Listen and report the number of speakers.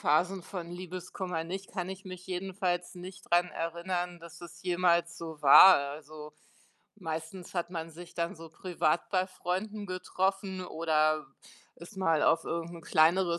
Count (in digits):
1